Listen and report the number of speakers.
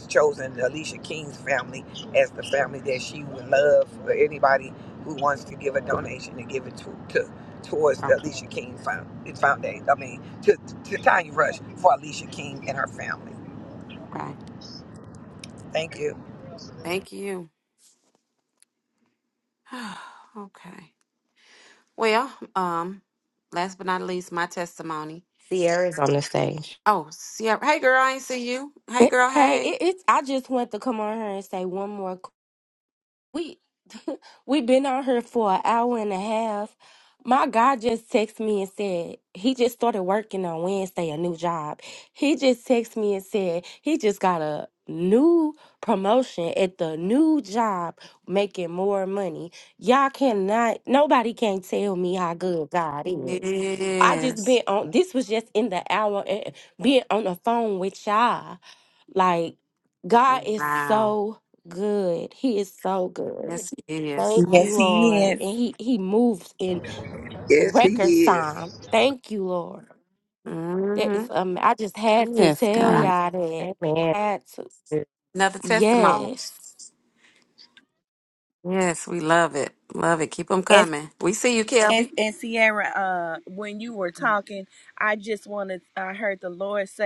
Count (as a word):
five